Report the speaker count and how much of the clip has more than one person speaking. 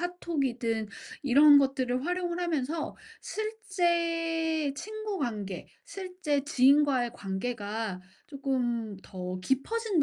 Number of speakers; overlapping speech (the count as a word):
one, no overlap